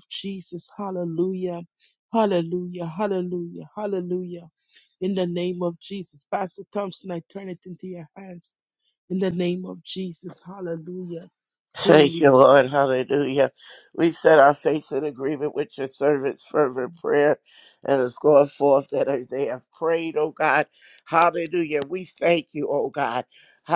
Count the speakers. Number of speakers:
two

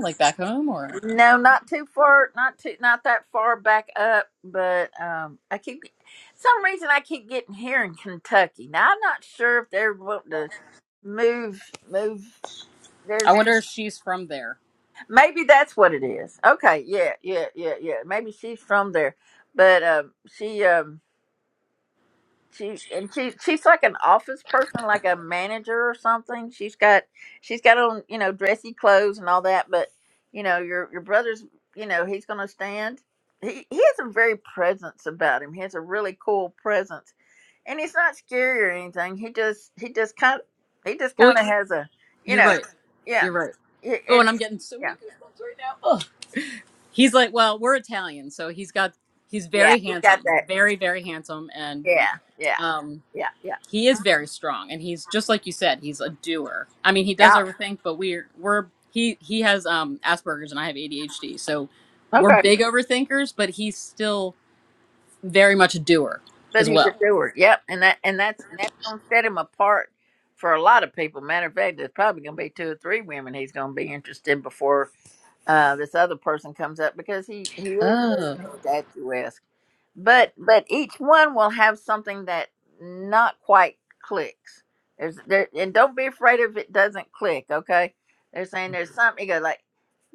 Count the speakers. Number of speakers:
two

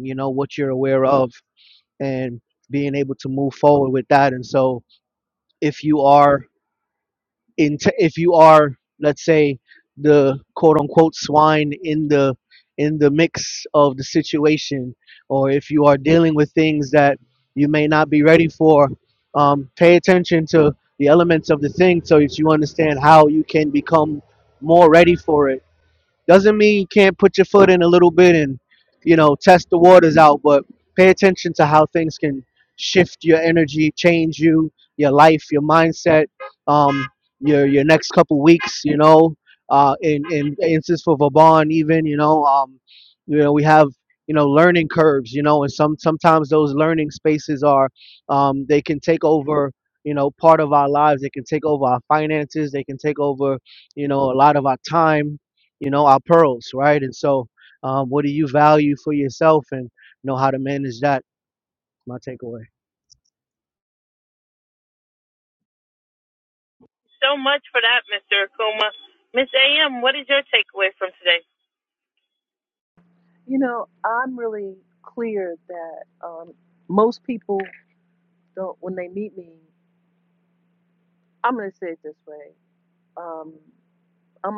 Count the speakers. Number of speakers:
three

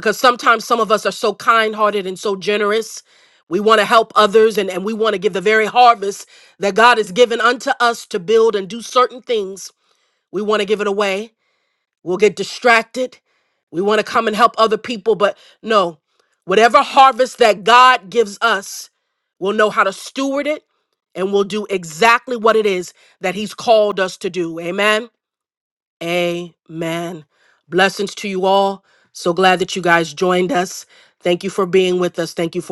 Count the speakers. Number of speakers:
one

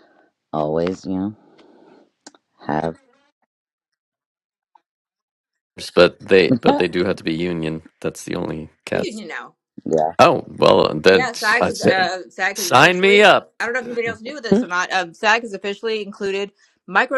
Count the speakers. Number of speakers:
three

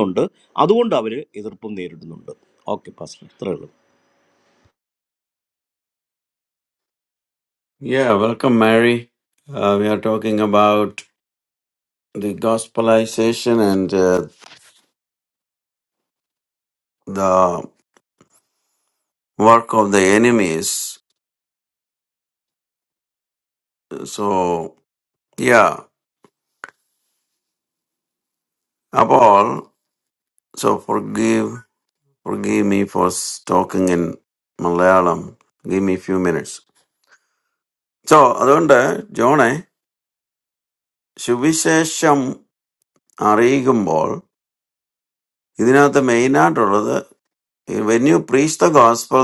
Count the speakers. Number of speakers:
two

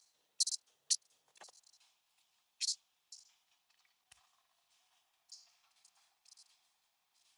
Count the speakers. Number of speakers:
zero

